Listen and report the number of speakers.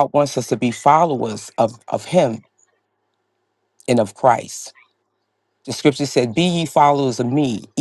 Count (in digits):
1